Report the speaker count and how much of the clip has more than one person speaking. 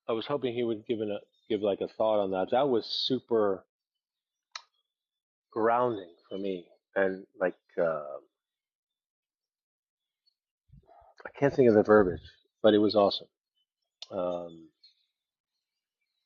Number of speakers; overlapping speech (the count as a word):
one, no overlap